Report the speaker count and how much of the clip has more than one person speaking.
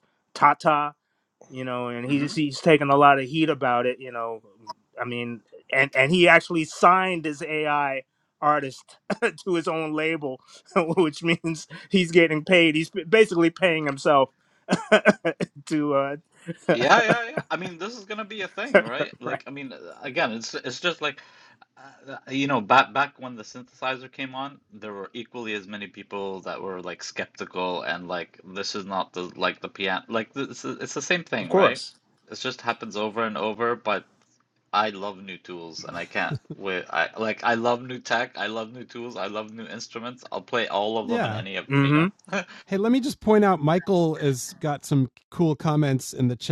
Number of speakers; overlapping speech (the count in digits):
3, about 3%